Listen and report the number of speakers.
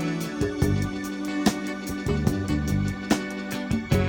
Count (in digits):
0